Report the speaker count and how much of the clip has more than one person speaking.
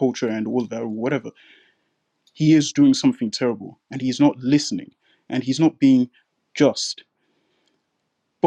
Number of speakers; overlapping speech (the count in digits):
1, no overlap